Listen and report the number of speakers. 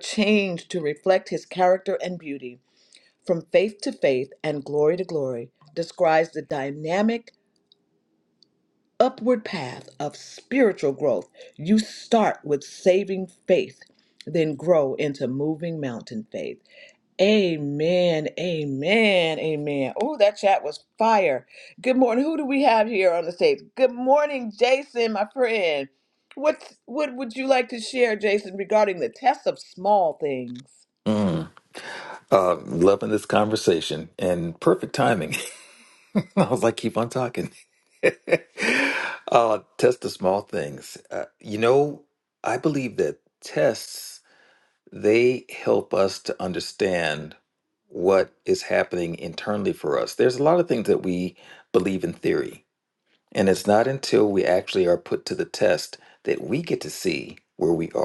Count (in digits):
2